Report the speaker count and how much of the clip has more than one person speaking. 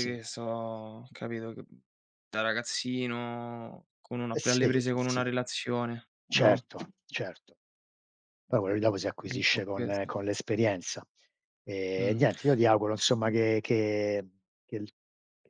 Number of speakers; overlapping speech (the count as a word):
two, about 13%